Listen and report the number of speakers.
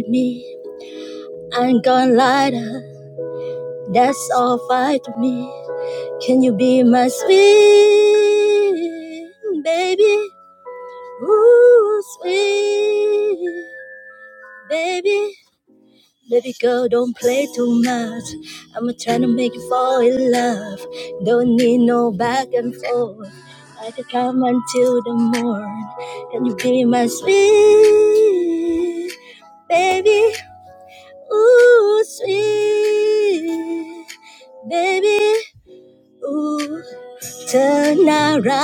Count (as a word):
one